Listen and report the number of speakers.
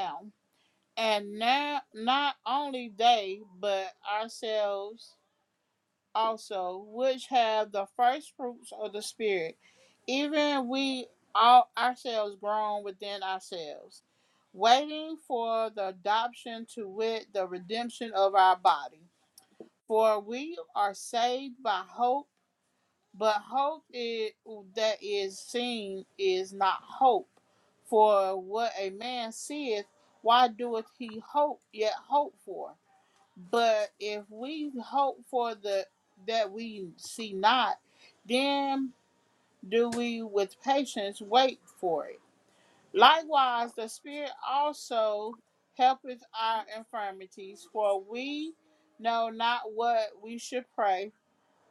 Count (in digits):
1